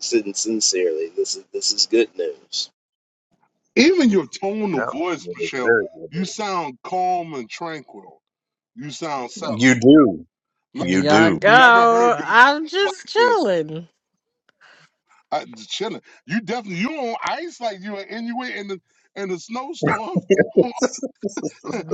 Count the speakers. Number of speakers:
4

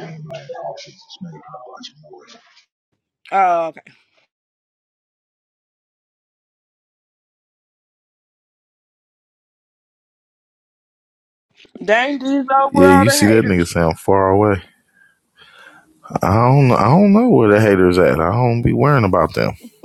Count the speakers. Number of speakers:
3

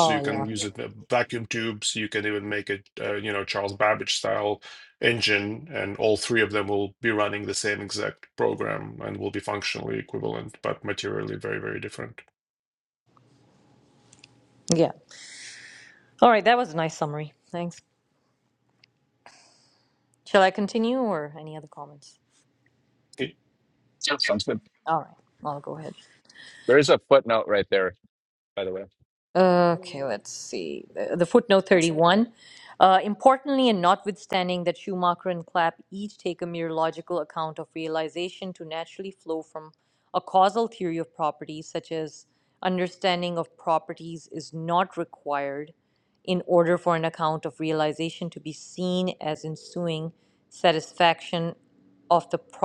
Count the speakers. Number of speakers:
3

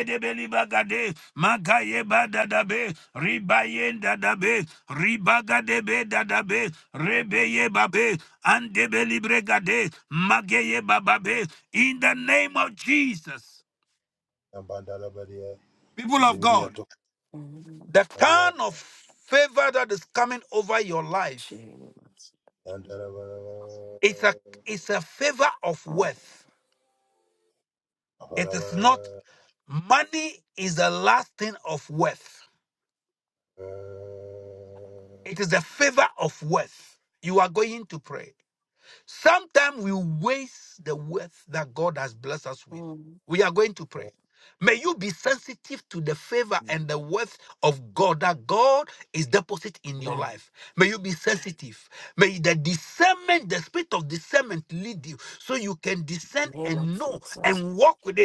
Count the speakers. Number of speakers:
3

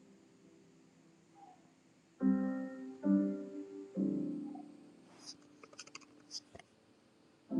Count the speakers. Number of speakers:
0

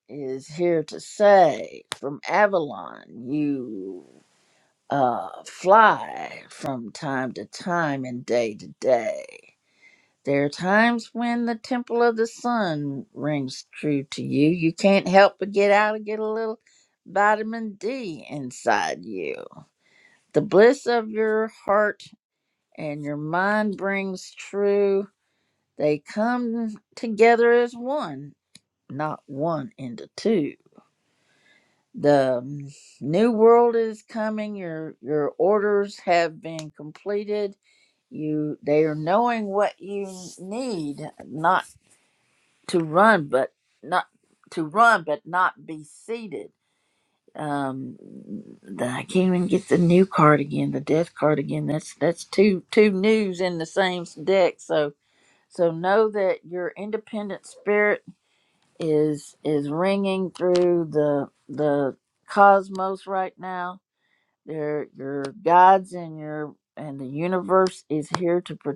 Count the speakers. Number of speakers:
1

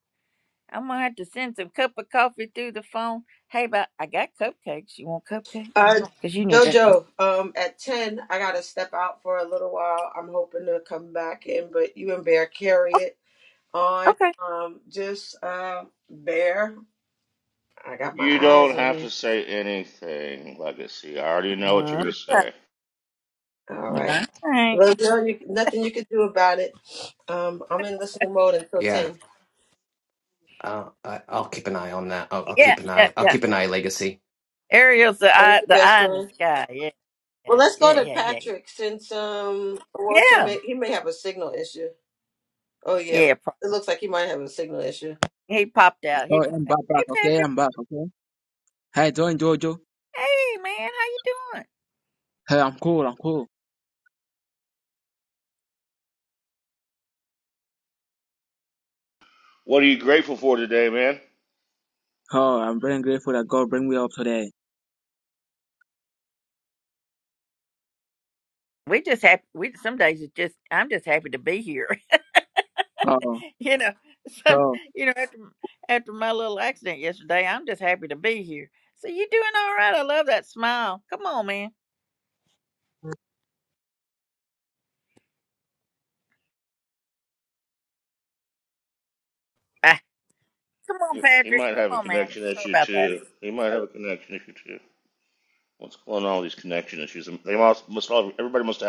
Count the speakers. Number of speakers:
5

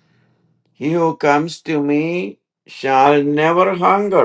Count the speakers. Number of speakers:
1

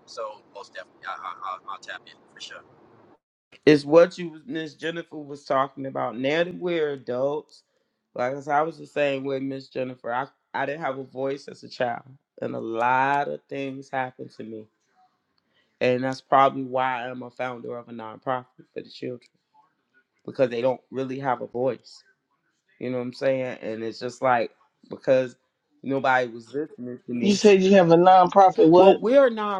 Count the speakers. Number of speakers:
3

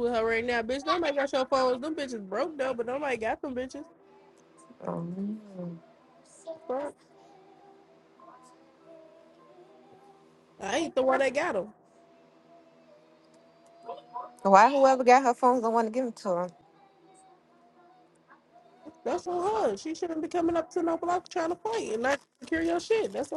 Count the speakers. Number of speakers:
2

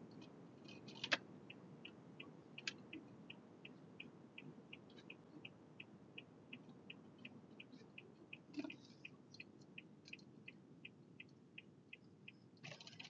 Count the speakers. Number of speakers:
0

